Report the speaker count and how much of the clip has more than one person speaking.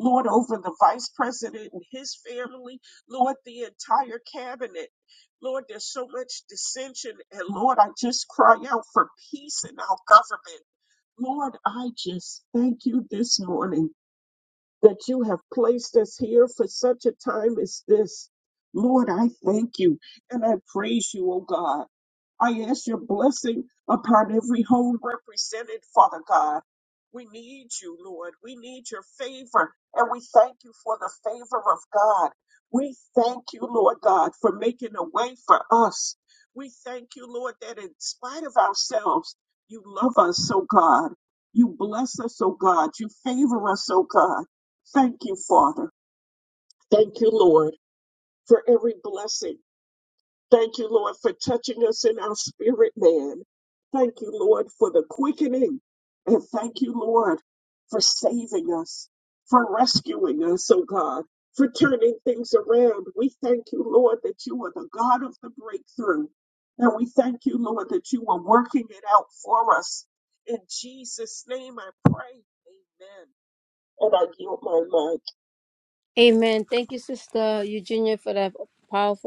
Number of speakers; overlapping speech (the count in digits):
2, no overlap